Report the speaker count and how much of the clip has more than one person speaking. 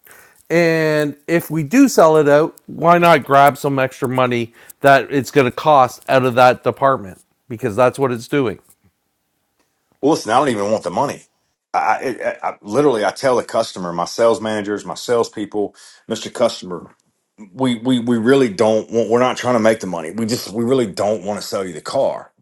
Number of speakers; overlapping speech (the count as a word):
two, no overlap